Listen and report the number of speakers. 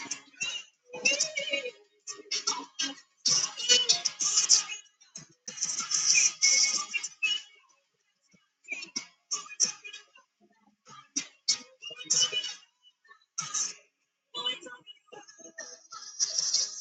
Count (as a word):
zero